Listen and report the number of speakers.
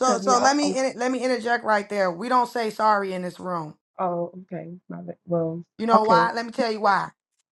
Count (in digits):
2